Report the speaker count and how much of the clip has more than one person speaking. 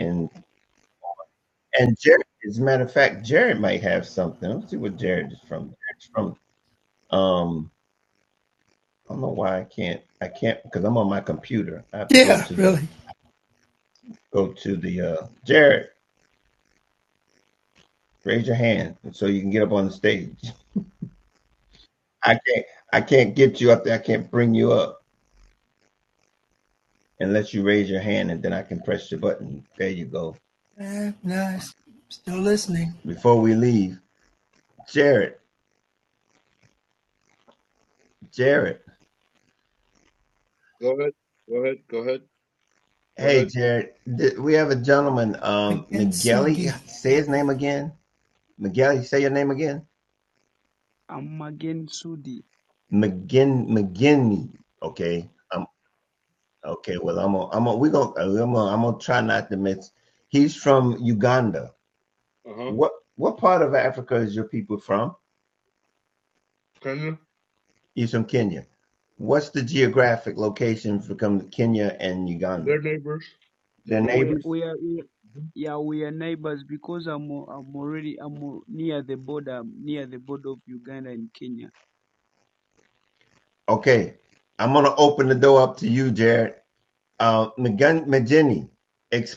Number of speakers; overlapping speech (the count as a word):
four, about 3%